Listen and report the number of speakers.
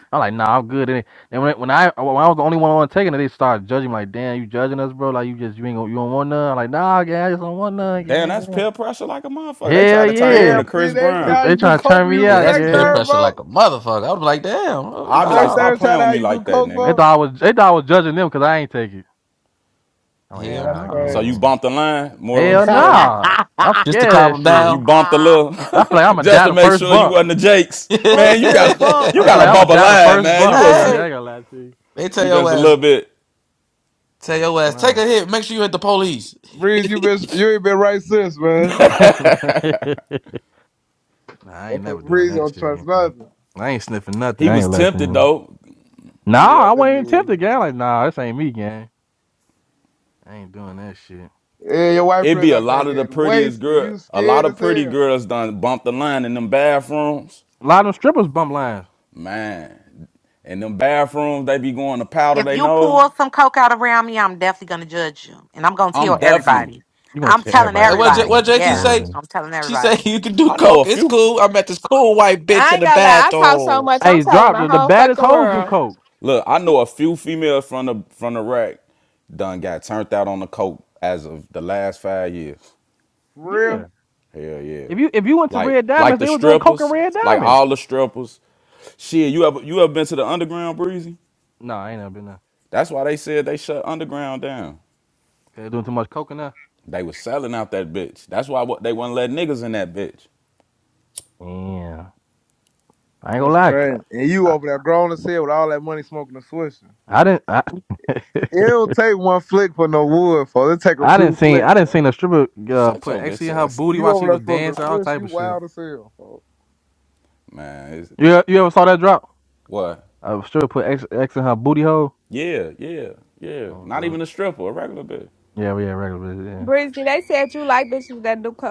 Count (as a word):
six